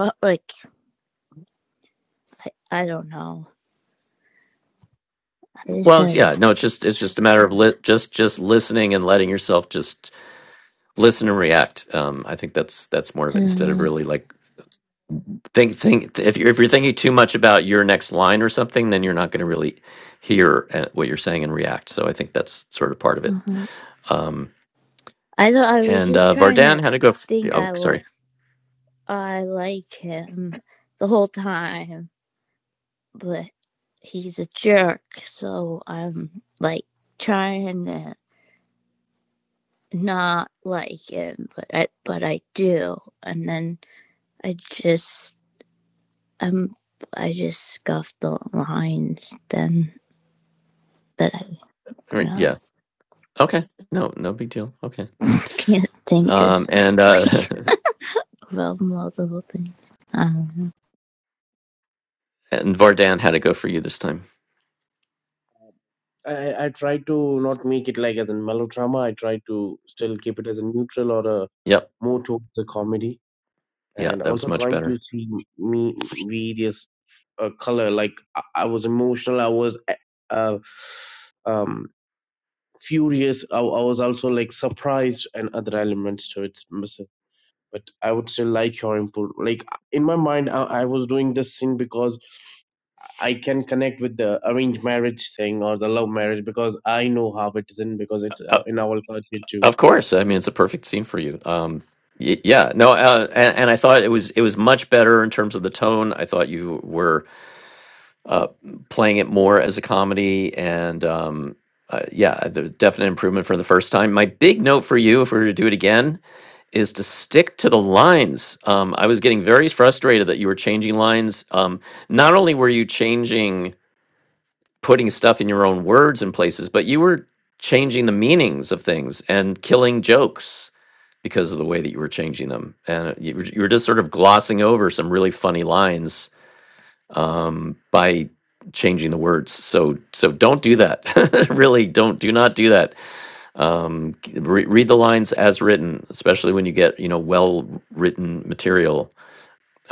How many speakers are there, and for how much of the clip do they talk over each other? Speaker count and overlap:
three, about 3%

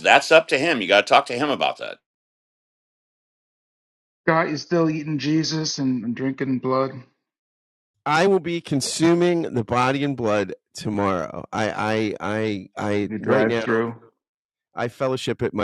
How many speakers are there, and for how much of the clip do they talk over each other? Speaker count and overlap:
three, about 5%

